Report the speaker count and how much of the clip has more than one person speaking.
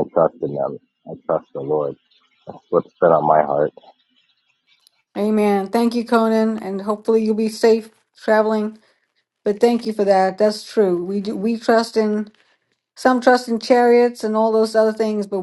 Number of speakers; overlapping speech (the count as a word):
two, no overlap